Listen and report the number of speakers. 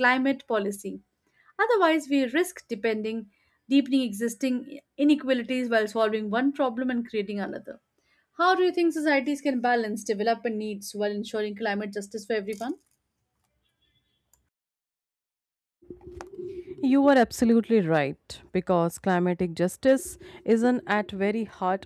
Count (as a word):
two